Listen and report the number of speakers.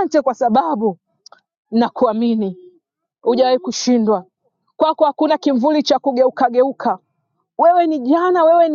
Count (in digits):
1